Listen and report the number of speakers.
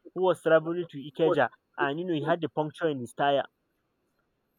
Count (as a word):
one